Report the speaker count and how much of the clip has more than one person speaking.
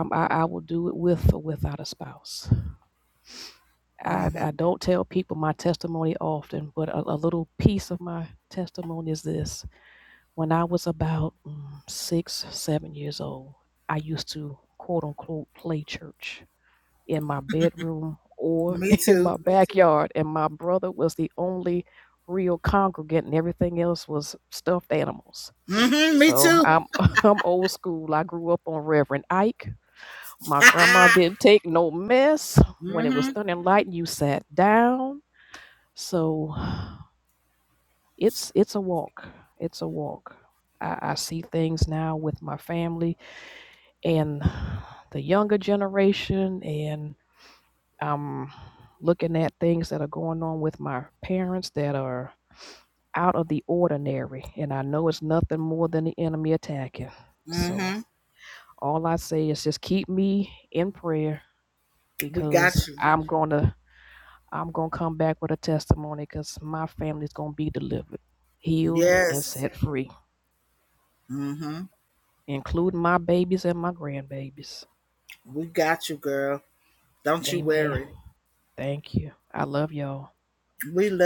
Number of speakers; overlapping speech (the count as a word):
two, about 4%